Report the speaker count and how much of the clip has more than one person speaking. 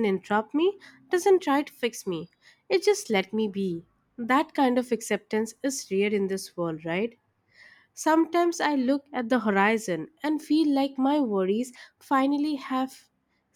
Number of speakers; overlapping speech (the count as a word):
one, no overlap